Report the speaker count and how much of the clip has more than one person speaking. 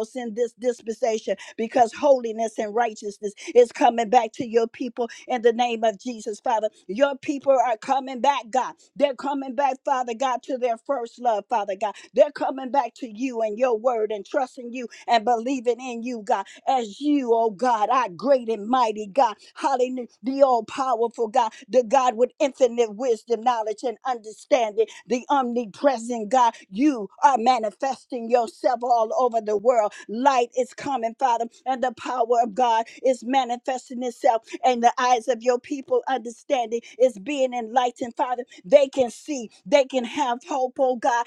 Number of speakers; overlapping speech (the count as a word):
one, no overlap